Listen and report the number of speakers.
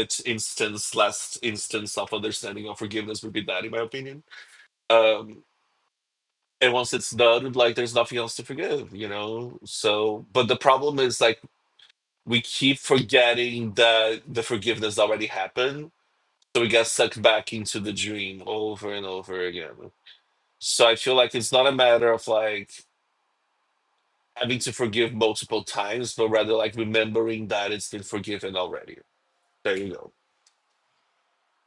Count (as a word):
one